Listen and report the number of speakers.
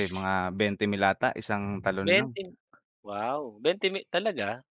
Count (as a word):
two